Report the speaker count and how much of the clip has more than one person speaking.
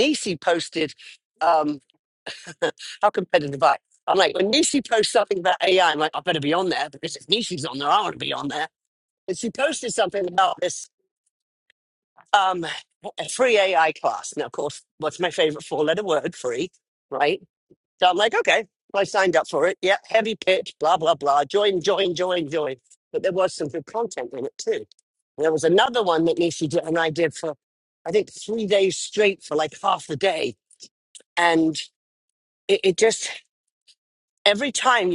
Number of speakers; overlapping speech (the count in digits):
1, no overlap